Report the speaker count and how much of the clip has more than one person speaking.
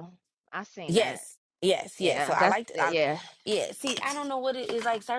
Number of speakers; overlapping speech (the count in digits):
2, about 24%